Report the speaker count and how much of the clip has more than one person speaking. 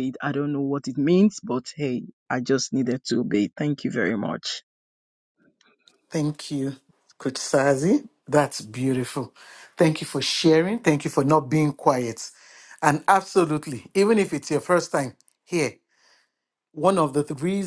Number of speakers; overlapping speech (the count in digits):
2, no overlap